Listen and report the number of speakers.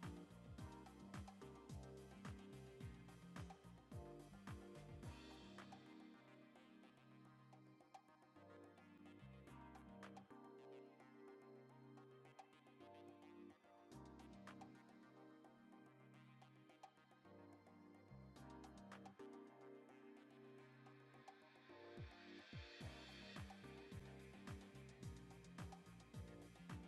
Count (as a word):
zero